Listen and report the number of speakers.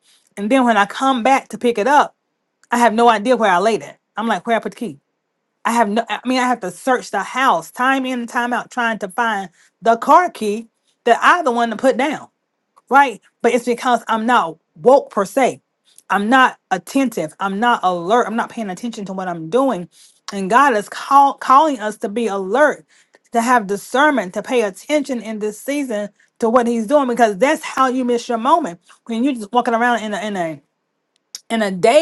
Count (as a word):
one